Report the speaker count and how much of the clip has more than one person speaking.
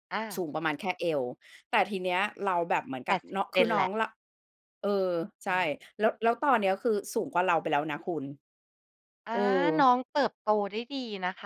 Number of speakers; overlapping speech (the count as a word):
two, about 8%